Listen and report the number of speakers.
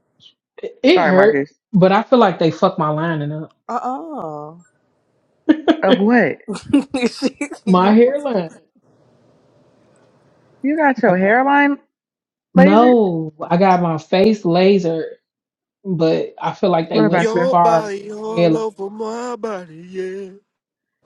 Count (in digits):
4